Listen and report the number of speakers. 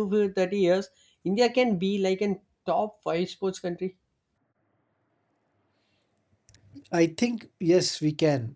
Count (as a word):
two